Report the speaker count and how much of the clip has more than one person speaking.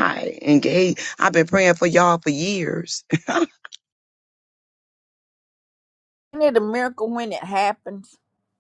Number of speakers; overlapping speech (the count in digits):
2, no overlap